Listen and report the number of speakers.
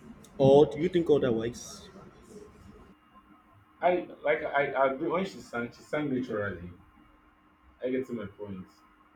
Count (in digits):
2